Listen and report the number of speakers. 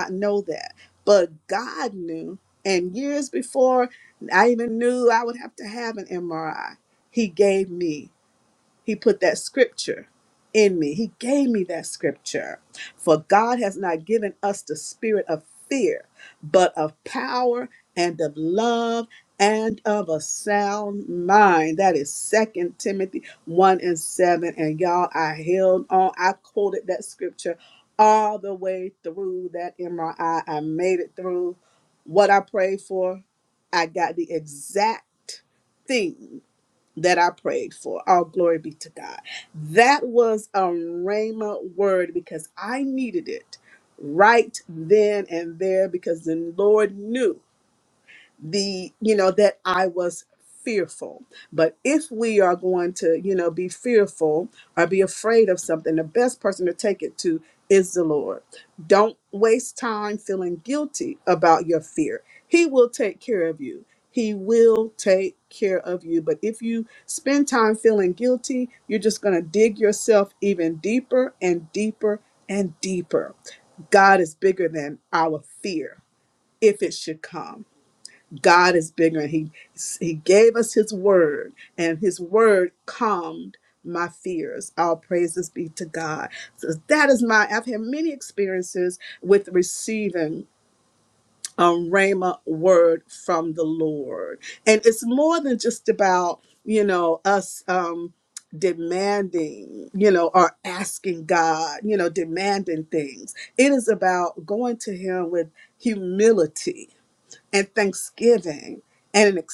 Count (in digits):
1